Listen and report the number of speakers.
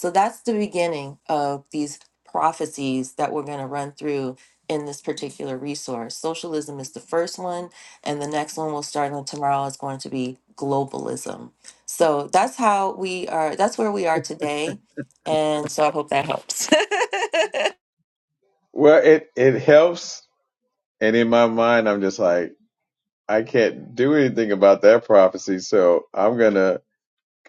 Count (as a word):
two